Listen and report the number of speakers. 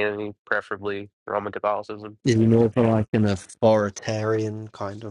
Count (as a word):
two